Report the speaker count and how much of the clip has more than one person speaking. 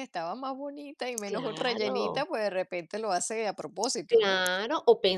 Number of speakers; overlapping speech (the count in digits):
2, about 24%